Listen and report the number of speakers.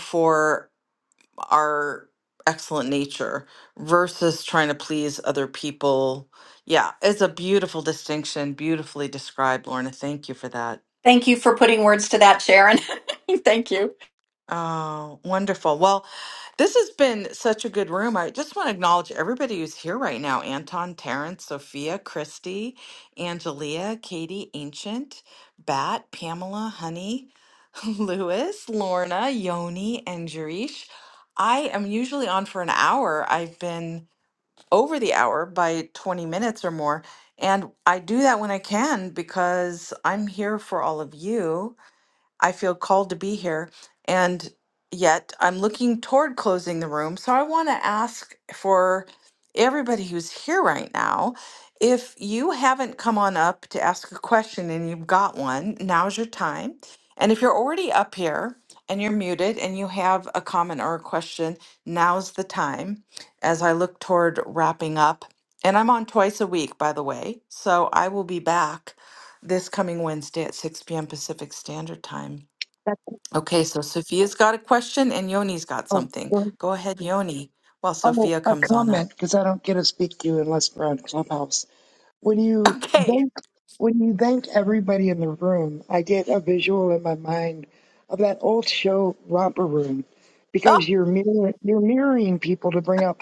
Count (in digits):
3